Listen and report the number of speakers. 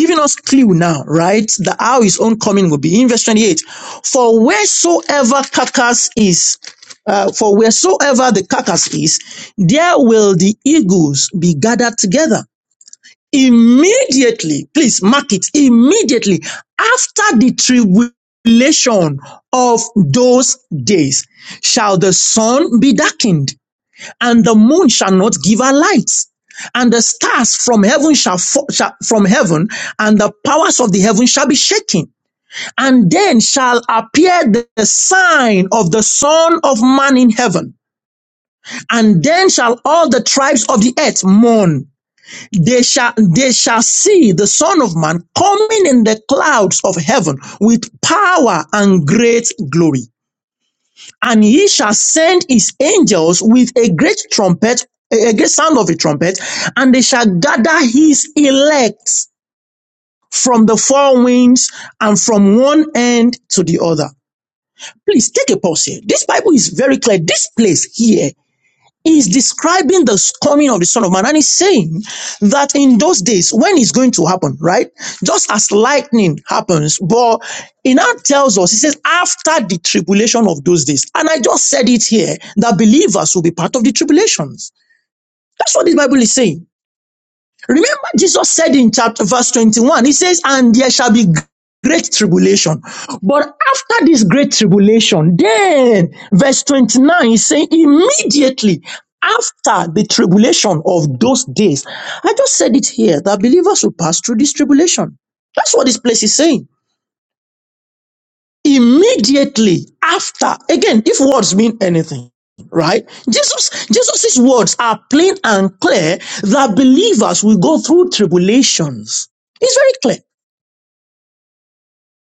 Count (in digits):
1